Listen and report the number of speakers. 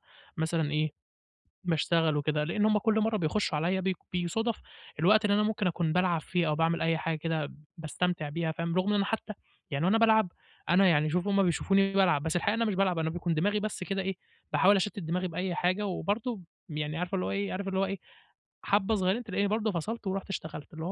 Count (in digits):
1